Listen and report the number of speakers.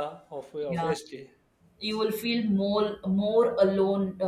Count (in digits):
2